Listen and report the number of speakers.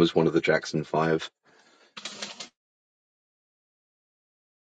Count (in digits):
1